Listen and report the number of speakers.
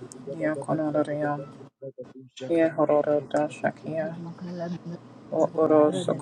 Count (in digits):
3